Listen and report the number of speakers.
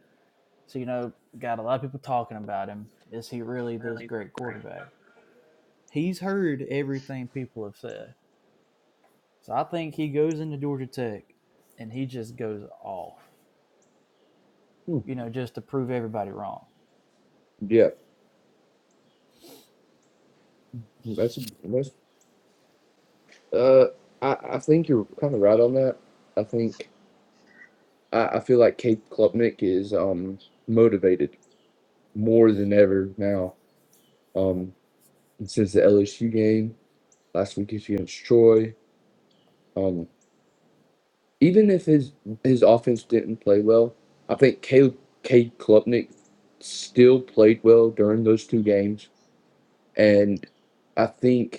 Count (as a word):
two